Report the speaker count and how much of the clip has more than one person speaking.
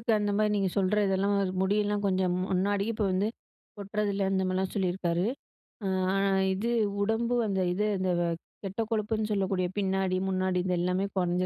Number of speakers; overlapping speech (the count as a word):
one, no overlap